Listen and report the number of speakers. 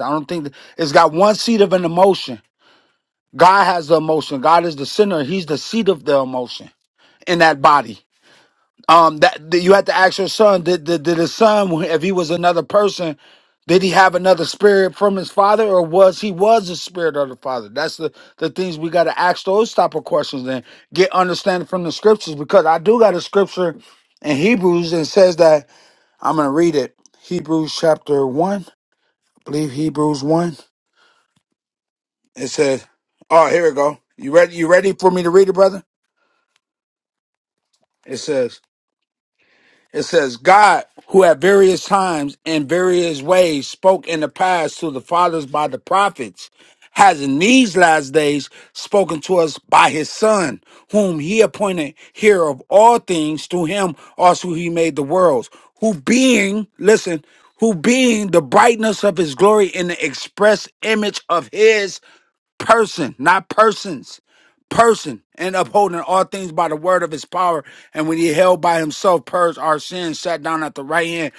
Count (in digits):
1